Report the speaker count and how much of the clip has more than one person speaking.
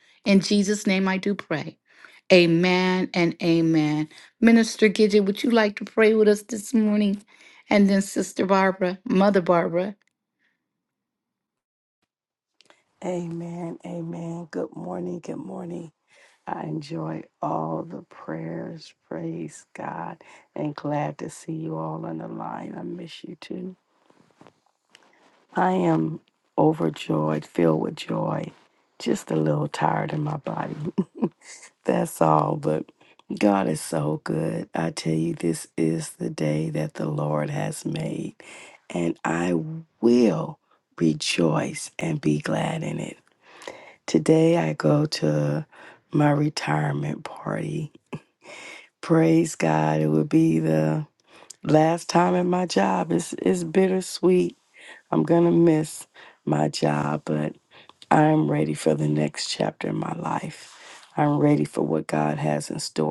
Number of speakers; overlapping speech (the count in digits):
2, no overlap